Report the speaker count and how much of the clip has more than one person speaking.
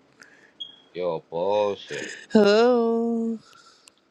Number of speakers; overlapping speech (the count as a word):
two, no overlap